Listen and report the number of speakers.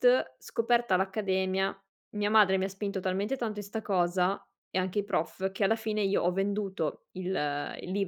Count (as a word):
one